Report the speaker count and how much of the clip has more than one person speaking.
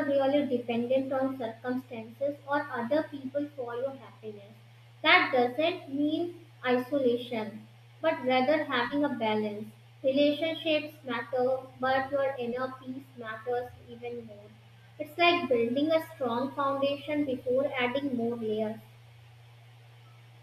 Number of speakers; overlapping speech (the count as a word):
one, no overlap